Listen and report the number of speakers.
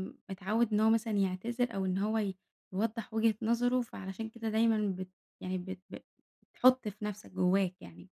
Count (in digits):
1